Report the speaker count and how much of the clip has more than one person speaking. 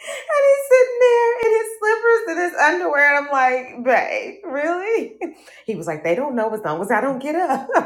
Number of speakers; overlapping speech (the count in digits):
1, no overlap